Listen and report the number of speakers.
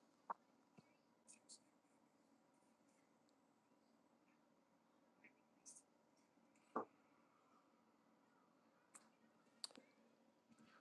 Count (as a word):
zero